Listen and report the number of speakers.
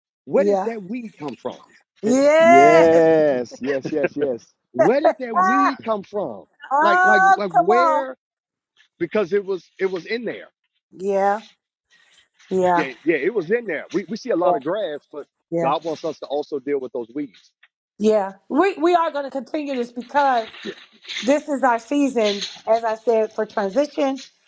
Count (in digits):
3